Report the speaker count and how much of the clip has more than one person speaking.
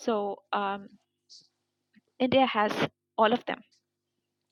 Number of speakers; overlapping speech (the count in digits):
1, no overlap